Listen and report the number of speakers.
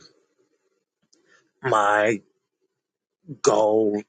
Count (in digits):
1